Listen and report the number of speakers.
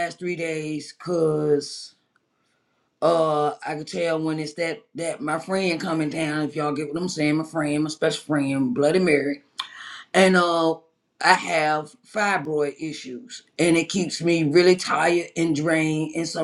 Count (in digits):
1